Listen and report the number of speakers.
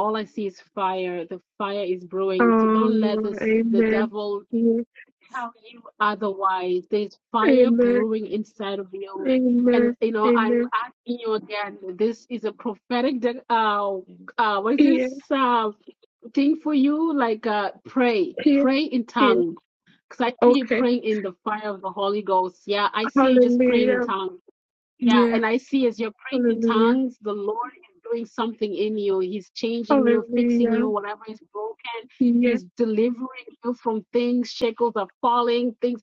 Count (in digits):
2